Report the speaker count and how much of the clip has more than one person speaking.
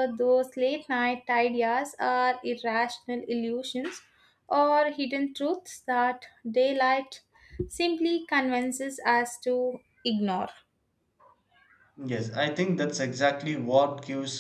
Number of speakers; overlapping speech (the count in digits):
2, no overlap